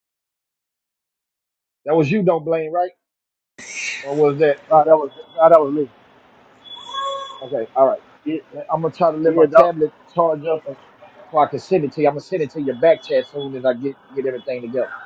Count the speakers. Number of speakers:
2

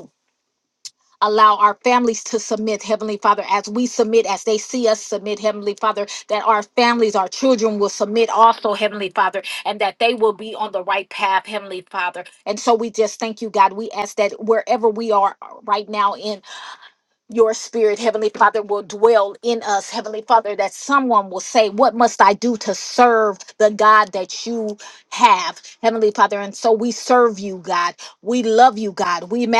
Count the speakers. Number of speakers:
1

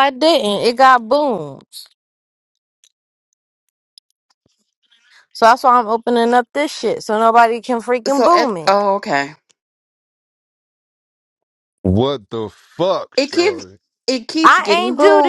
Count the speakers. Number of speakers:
3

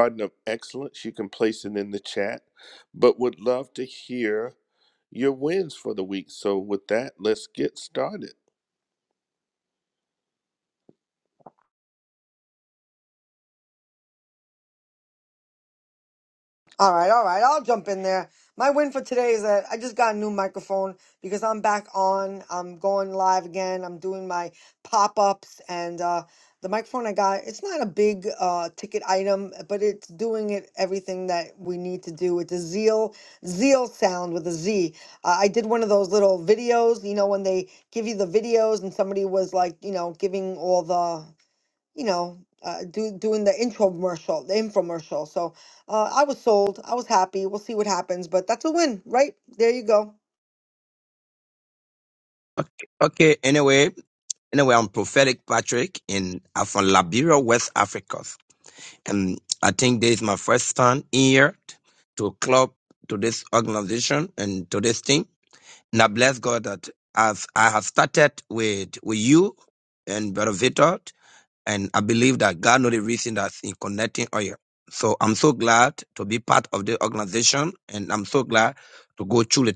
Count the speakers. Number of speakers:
3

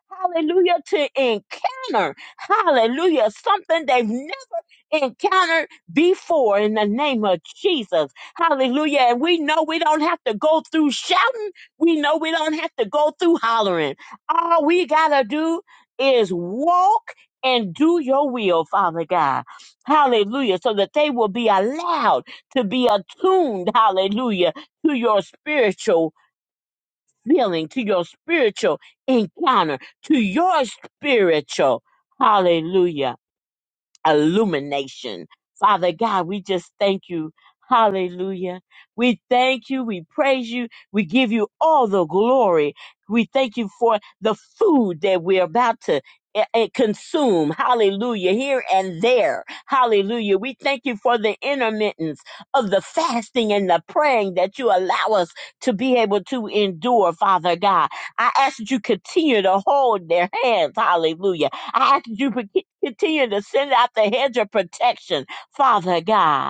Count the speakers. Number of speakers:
1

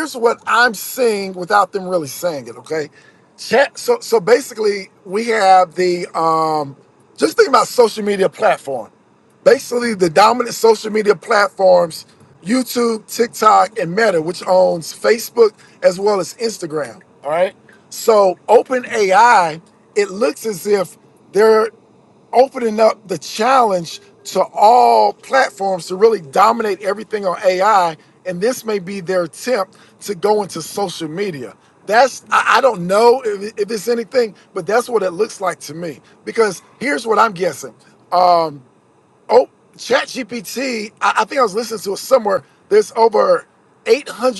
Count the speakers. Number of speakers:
1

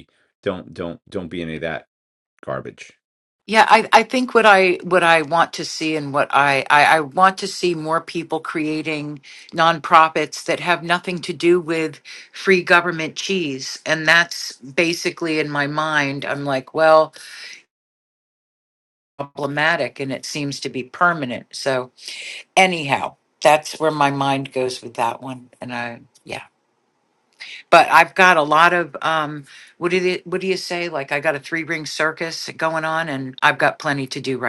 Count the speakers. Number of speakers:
2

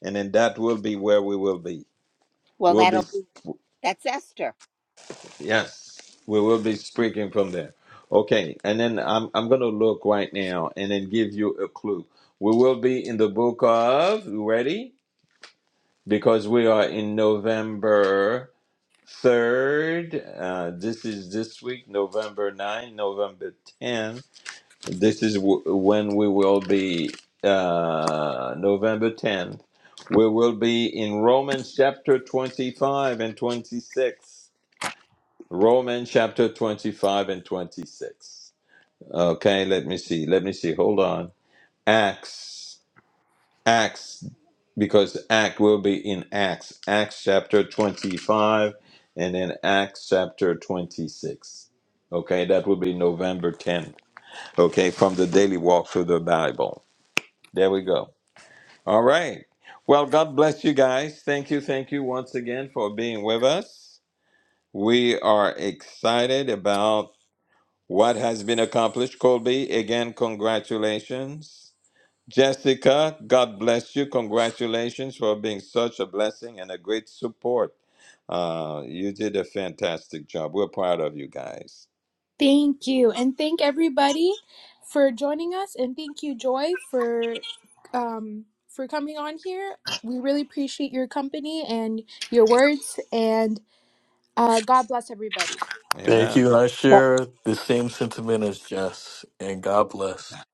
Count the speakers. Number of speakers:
4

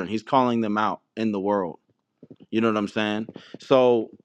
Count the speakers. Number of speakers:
1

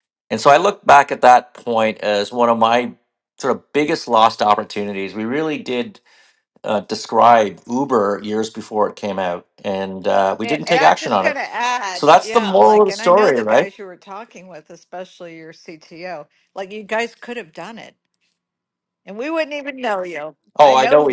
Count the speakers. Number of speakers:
2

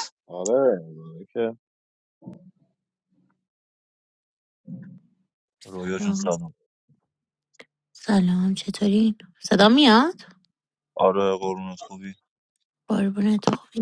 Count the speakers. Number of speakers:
3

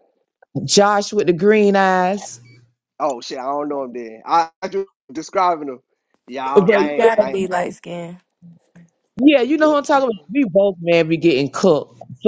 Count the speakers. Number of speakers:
3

